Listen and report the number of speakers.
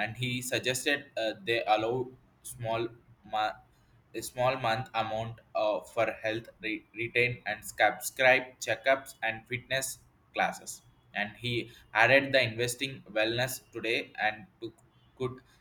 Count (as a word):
one